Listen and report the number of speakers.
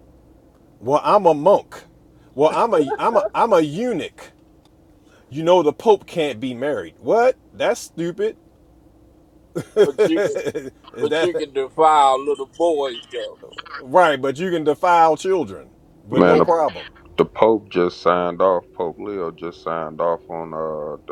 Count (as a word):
three